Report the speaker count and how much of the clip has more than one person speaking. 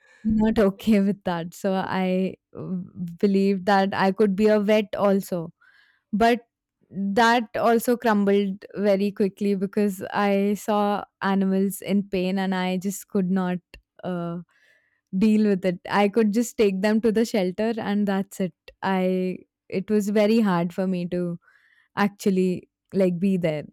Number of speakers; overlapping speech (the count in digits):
1, no overlap